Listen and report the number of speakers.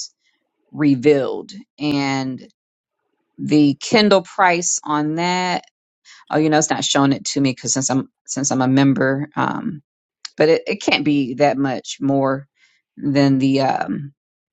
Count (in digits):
1